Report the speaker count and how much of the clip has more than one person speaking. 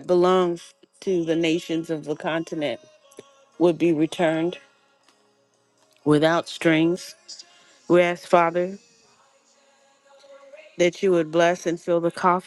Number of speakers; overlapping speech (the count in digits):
1, no overlap